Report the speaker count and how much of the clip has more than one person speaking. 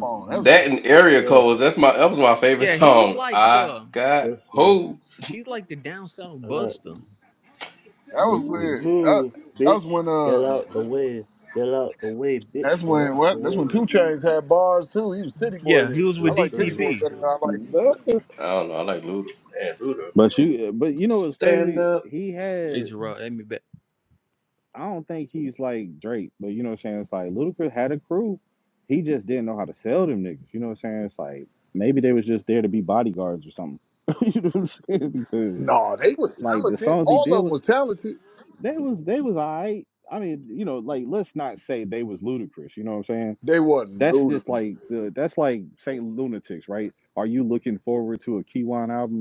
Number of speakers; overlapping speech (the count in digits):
5, about 22%